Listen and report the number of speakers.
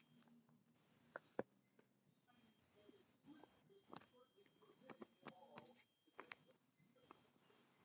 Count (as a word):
zero